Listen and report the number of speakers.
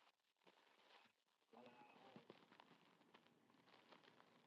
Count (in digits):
0